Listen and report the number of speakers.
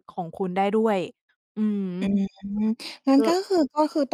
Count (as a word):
two